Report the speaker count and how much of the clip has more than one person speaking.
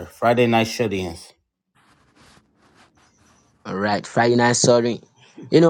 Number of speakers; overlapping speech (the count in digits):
2, no overlap